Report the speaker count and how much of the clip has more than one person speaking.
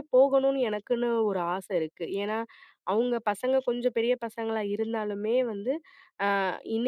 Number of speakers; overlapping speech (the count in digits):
1, no overlap